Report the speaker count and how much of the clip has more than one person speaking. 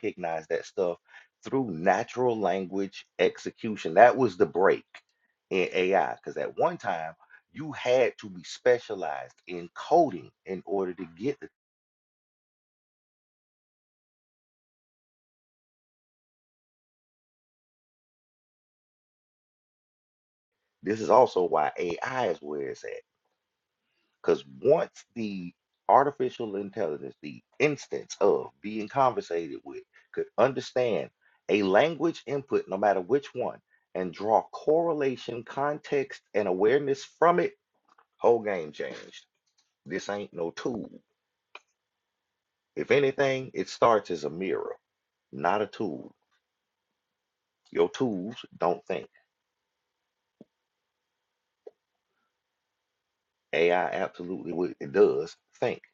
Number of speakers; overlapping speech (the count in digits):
1, no overlap